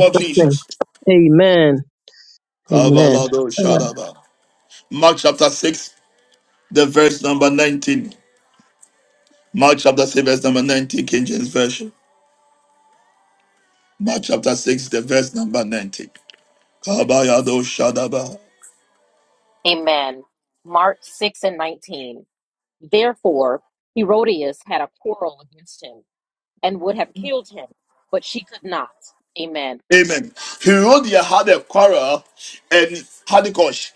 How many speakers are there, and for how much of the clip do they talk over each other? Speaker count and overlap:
3, about 5%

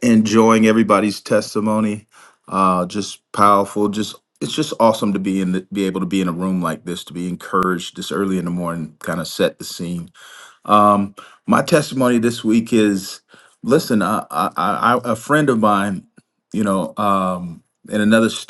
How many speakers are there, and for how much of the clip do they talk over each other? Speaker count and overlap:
1, no overlap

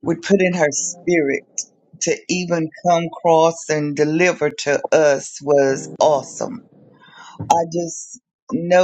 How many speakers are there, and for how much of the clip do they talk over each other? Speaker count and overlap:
1, no overlap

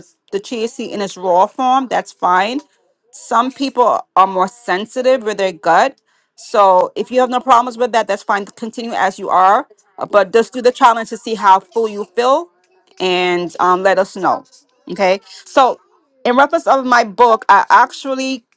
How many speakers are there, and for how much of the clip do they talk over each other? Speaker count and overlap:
1, no overlap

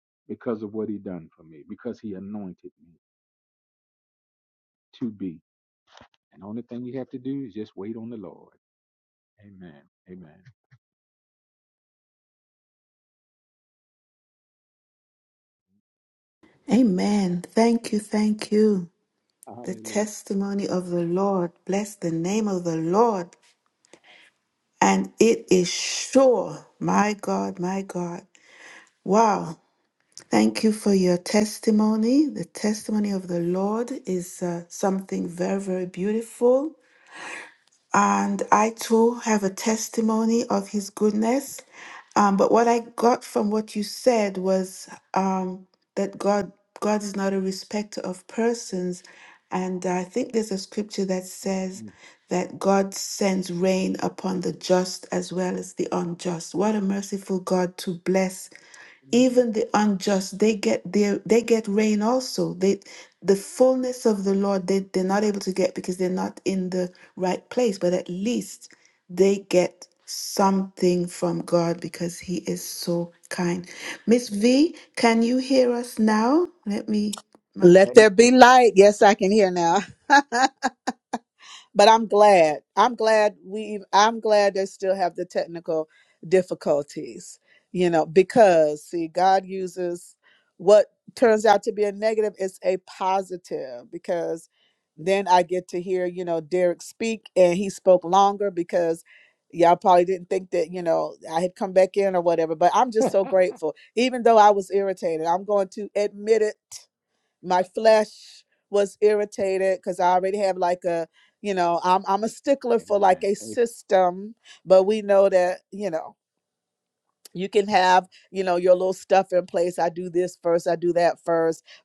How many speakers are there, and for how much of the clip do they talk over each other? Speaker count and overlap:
3, about 1%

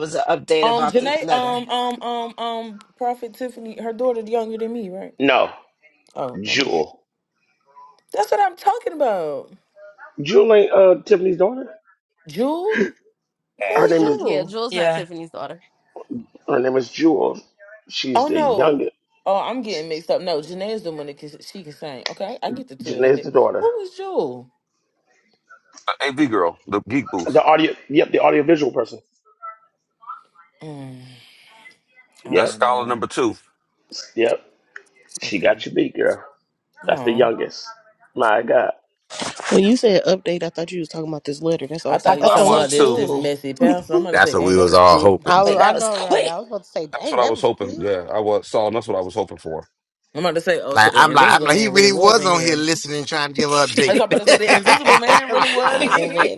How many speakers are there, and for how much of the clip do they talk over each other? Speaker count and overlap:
6, about 21%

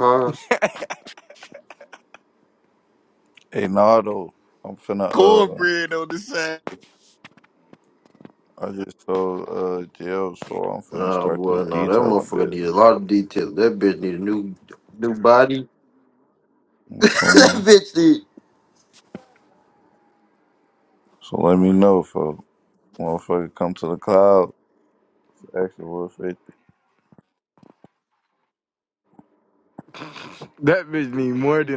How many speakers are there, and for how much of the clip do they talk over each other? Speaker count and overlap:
4, about 9%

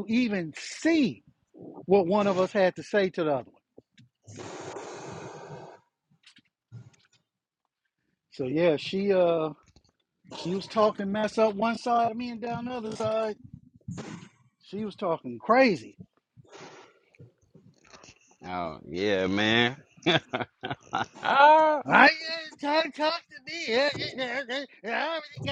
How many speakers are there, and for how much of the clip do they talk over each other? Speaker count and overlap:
2, no overlap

